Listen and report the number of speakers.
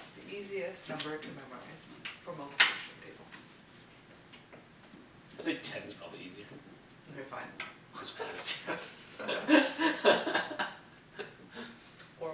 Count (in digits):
2